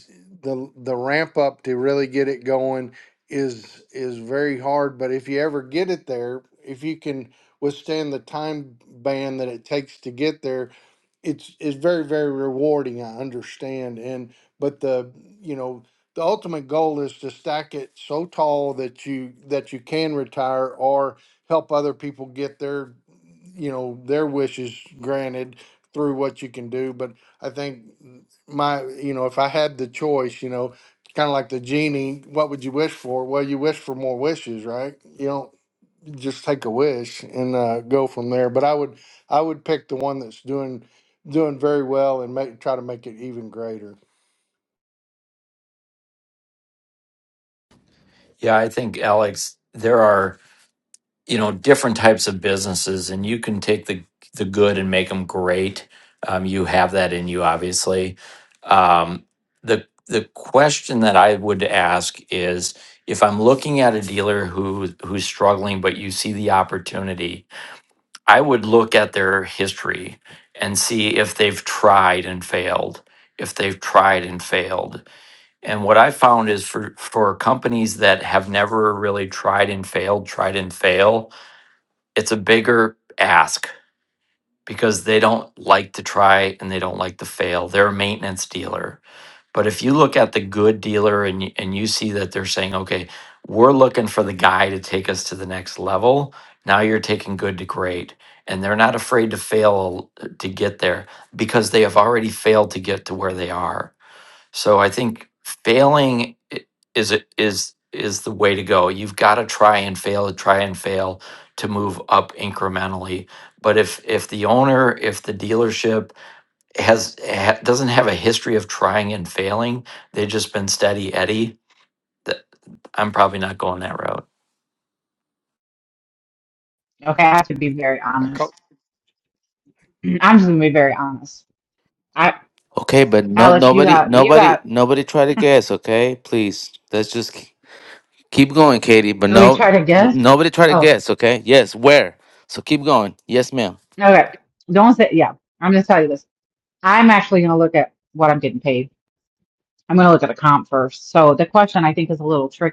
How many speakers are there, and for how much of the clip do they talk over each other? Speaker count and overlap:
4, about 1%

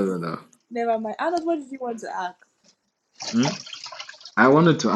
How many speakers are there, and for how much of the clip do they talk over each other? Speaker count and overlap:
2, no overlap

